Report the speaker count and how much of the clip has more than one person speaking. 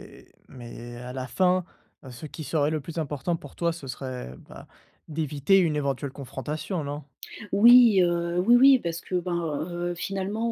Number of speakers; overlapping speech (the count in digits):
2, no overlap